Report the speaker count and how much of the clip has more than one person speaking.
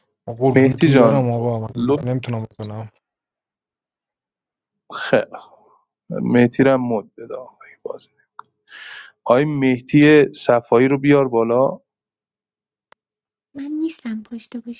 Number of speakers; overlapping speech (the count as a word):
three, about 6%